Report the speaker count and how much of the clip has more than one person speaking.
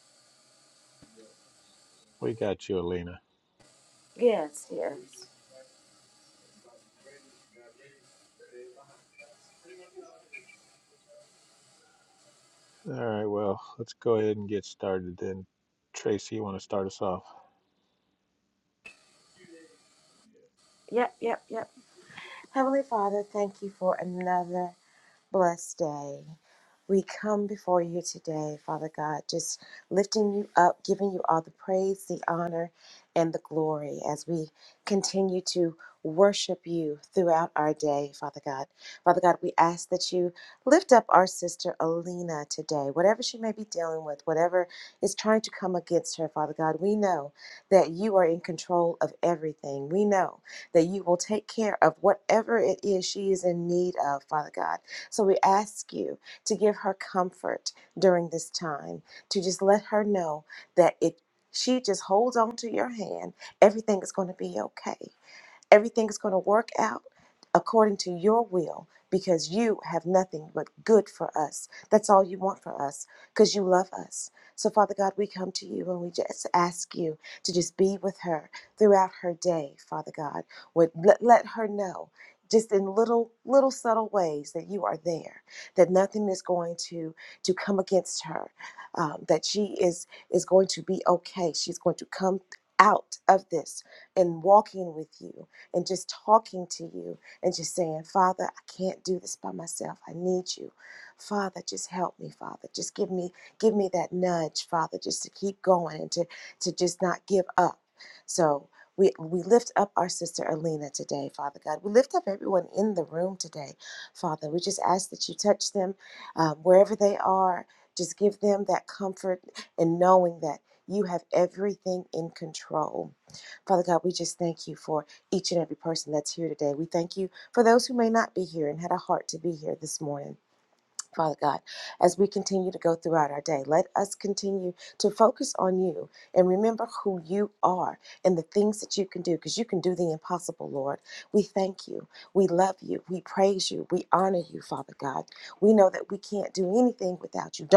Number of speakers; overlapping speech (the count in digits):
2, no overlap